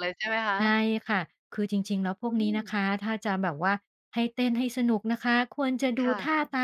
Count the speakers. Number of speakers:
two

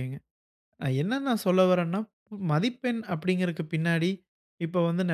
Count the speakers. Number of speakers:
one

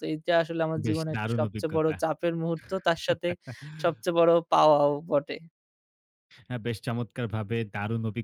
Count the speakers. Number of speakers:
two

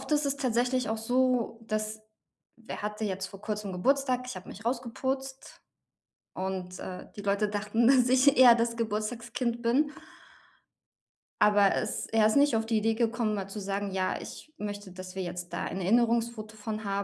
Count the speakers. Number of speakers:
one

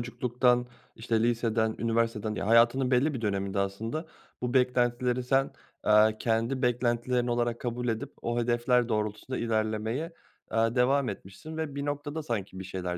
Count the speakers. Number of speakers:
one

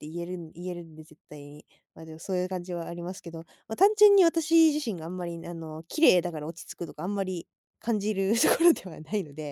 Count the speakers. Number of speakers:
one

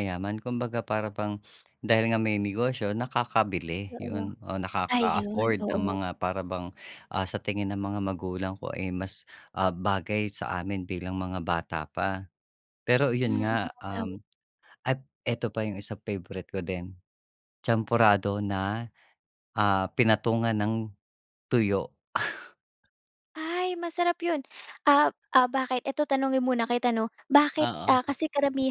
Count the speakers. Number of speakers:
two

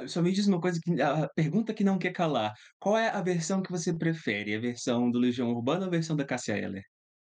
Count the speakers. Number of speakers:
one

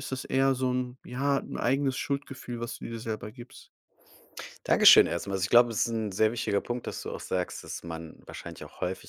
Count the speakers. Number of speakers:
two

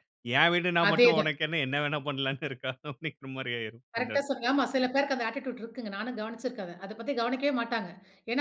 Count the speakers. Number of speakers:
two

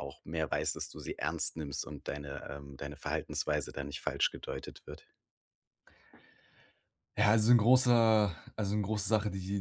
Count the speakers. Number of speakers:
two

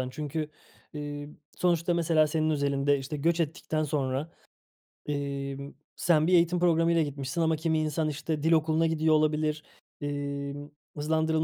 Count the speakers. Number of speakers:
one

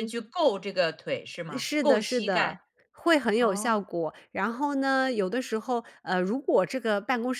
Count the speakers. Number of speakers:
two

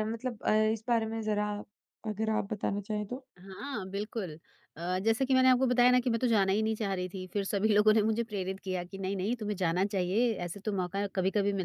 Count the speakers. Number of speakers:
two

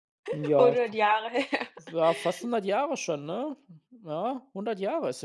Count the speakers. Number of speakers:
two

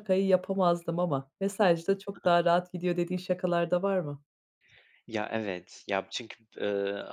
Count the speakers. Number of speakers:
two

